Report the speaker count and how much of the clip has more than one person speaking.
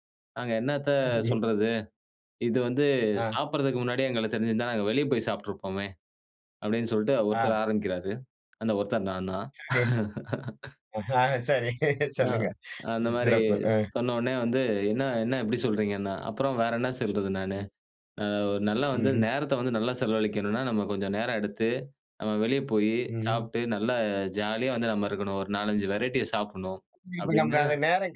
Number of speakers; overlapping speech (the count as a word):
two, about 7%